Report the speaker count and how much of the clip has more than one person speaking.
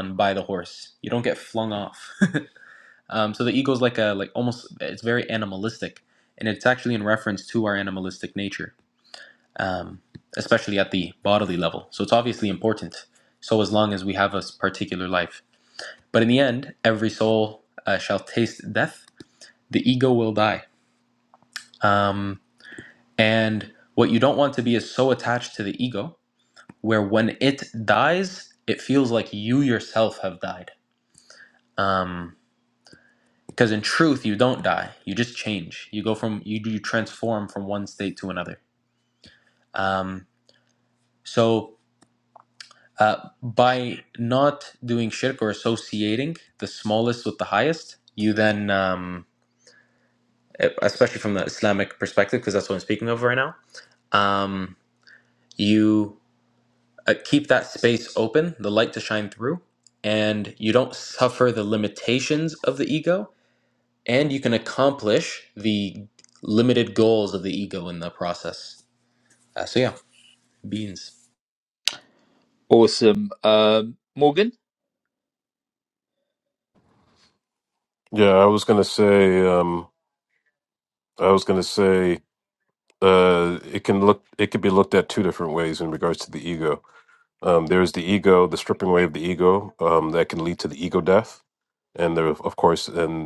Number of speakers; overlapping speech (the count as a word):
three, no overlap